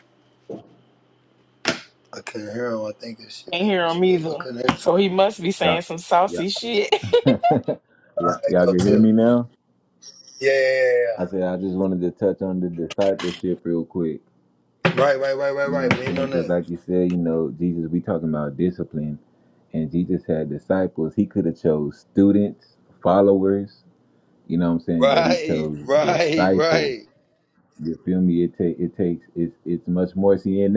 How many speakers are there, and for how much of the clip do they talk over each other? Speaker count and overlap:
three, about 18%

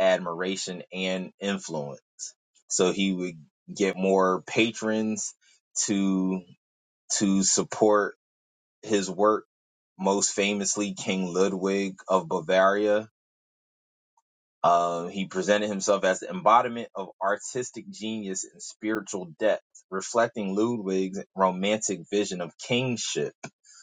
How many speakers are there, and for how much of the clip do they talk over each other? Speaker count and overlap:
one, no overlap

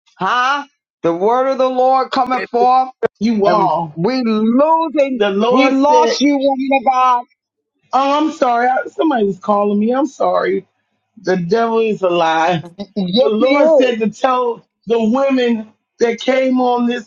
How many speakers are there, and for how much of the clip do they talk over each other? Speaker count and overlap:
two, about 11%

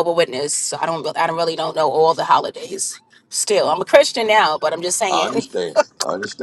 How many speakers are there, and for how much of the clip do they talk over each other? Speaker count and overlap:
two, about 4%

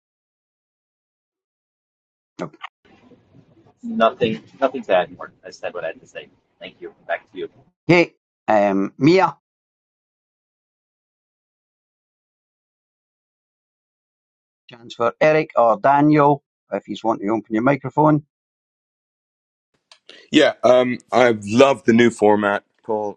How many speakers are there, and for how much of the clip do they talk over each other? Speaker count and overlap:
three, no overlap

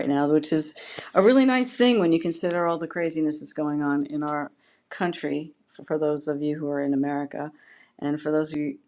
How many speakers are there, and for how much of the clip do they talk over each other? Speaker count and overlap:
one, no overlap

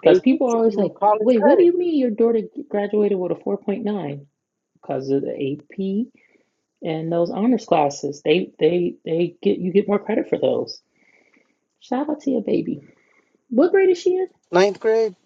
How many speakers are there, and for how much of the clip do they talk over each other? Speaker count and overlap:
two, about 11%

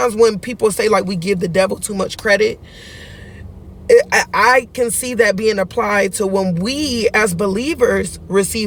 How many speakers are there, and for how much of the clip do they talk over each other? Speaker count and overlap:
one, no overlap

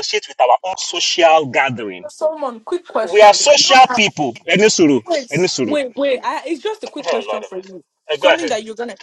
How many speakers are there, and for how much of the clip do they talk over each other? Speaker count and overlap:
two, about 15%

